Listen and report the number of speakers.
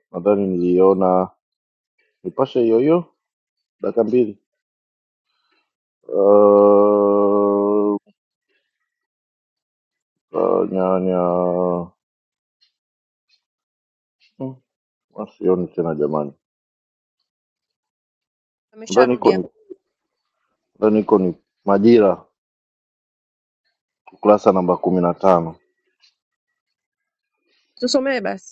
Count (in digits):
2